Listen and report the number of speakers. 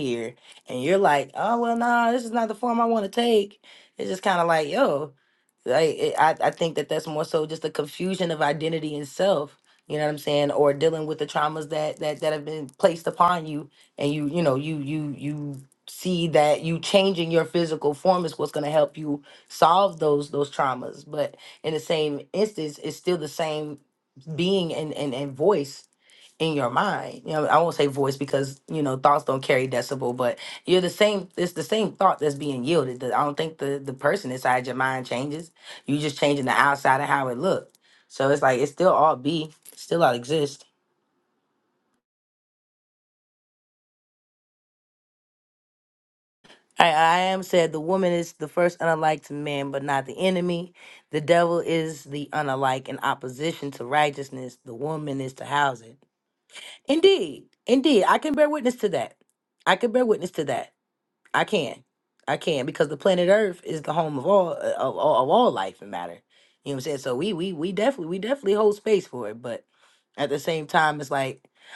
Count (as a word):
one